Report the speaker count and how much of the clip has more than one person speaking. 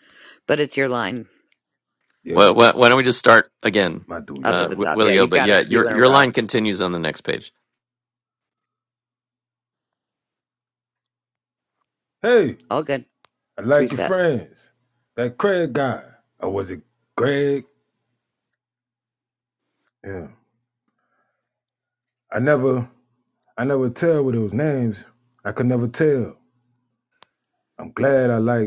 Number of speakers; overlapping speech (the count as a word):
three, about 9%